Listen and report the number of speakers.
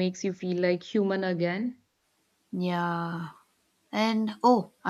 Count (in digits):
2